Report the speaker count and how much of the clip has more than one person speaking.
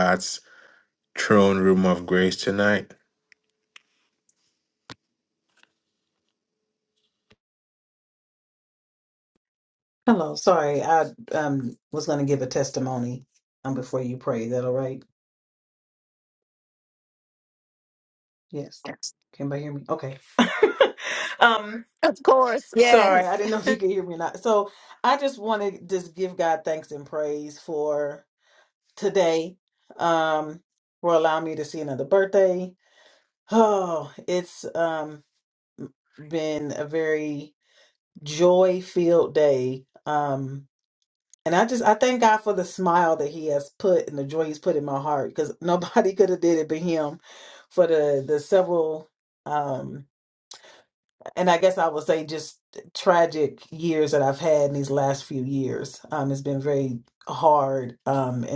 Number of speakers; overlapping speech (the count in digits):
3, about 1%